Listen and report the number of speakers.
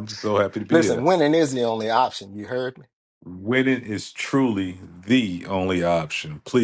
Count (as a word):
two